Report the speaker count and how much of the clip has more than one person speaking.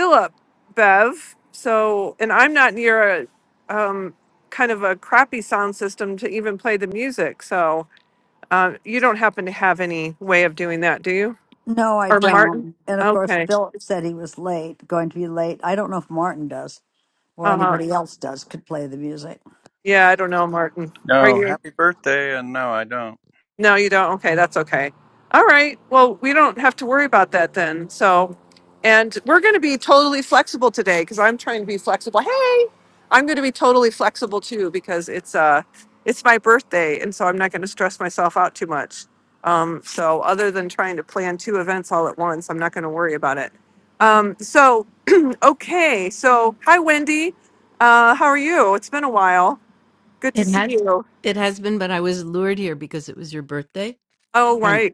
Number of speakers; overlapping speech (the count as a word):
four, about 5%